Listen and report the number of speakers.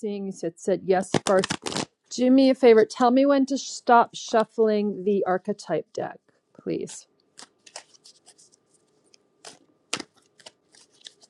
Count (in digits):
1